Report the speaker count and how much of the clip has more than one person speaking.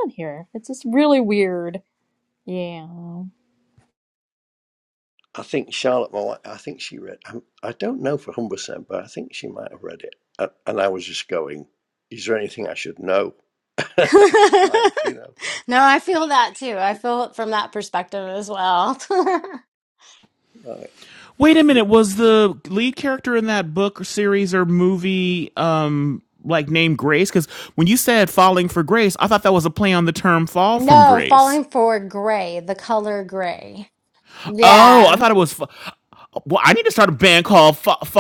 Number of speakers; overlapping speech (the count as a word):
four, about 4%